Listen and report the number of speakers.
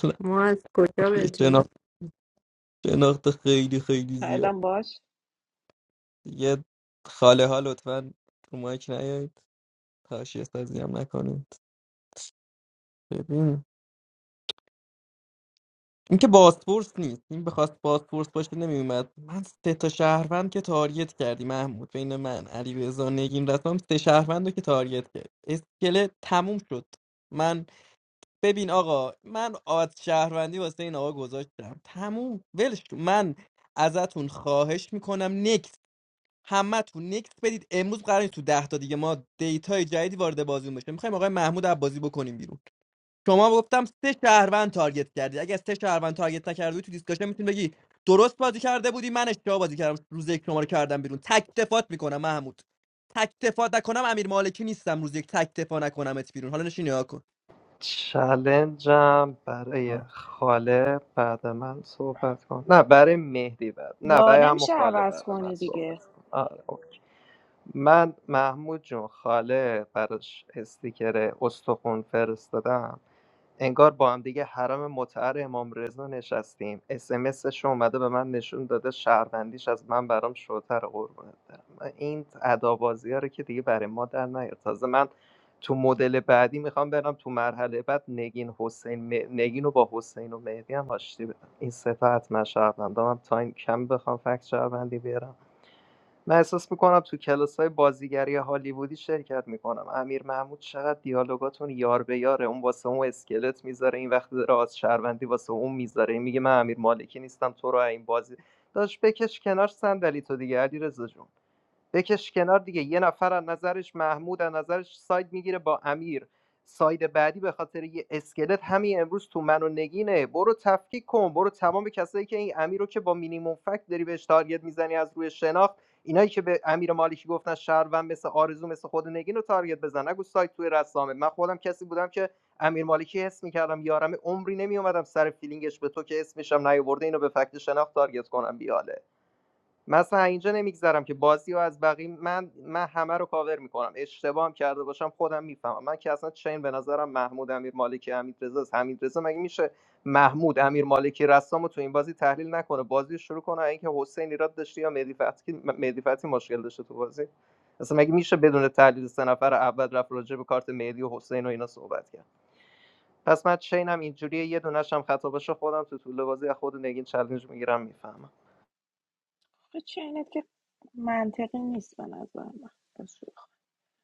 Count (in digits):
4